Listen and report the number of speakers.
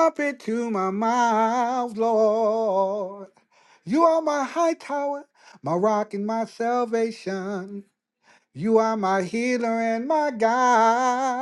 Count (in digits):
1